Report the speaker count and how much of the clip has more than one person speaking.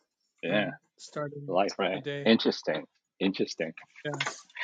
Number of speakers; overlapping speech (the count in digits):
2, about 15%